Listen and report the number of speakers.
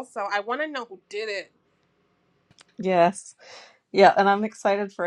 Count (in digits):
2